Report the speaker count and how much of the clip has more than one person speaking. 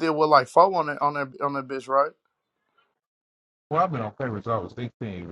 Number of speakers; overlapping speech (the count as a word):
two, no overlap